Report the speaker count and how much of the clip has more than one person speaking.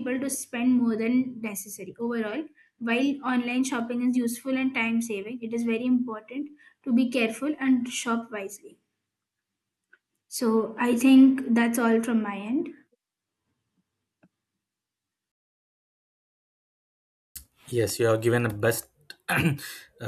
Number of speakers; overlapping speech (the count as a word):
two, no overlap